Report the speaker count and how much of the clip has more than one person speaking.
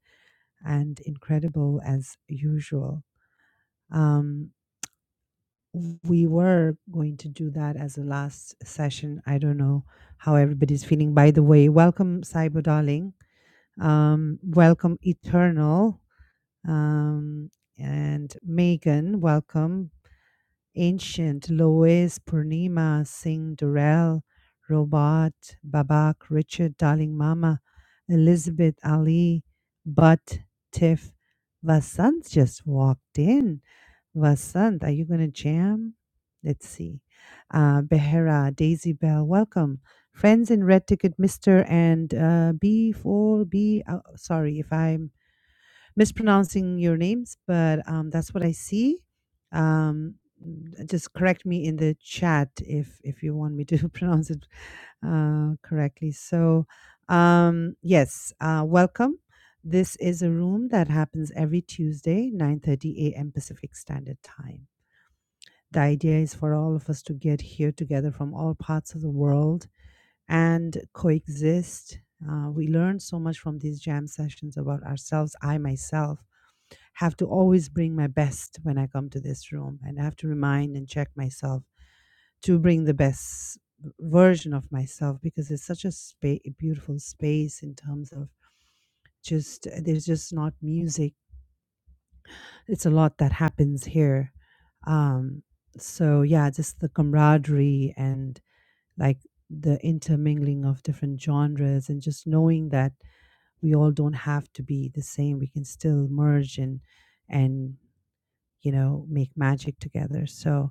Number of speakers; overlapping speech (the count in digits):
1, no overlap